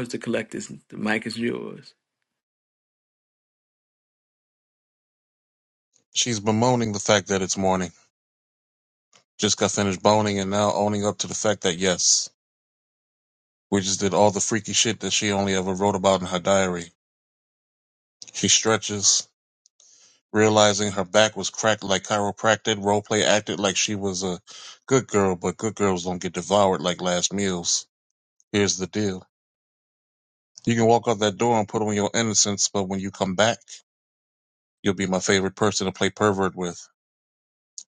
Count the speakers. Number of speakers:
2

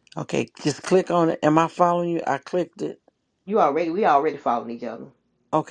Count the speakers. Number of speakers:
2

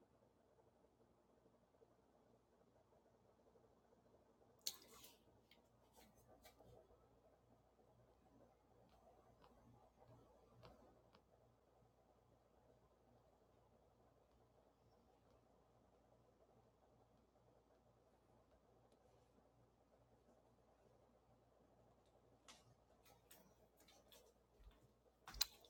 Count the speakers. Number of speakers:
0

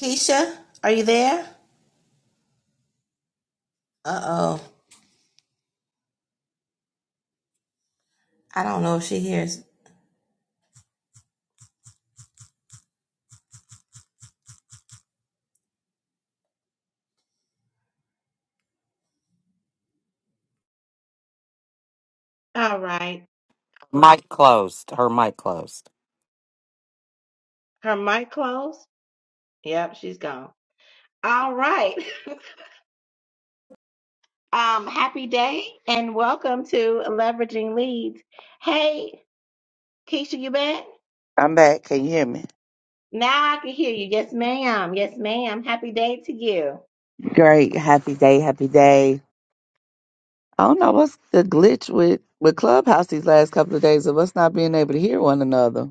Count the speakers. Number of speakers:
3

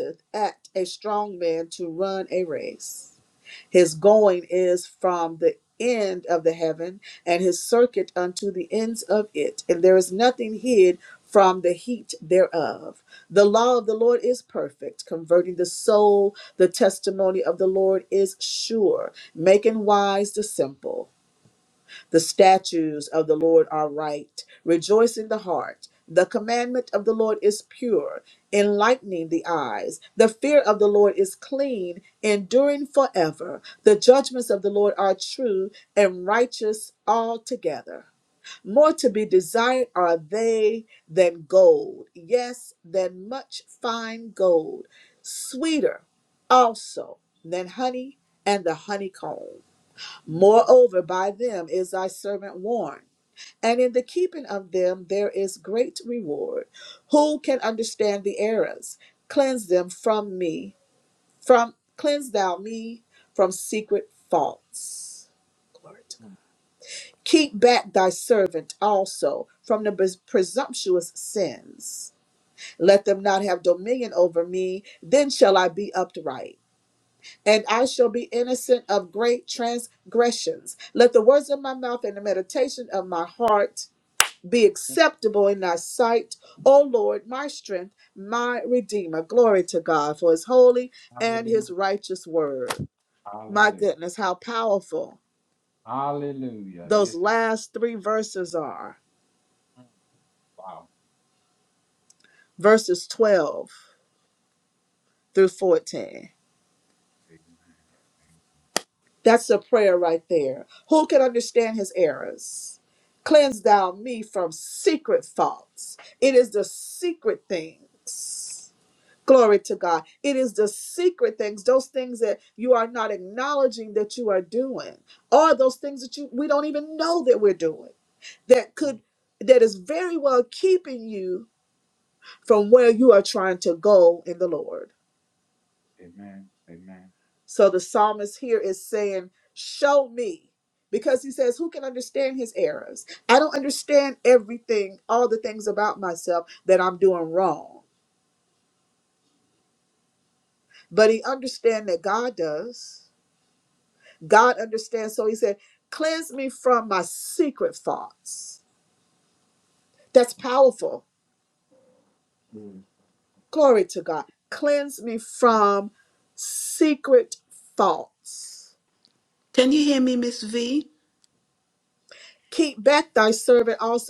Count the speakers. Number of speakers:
3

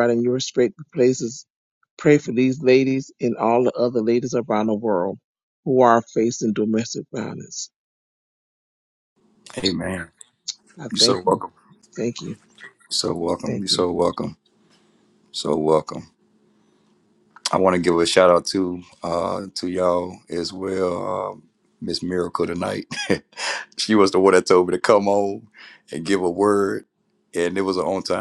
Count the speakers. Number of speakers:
2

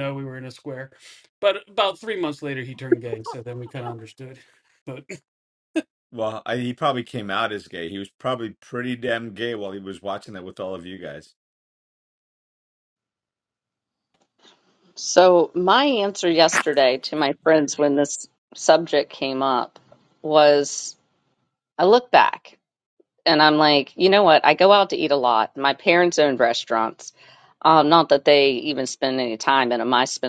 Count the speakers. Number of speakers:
3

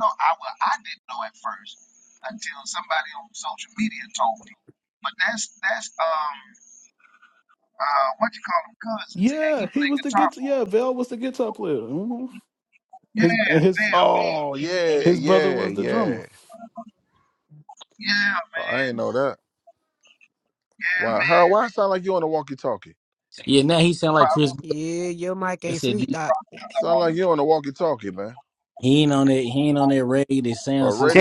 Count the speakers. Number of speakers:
5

